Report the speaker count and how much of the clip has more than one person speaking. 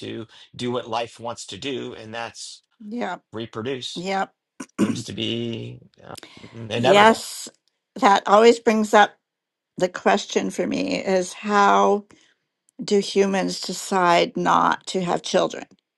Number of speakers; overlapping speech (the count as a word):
two, about 3%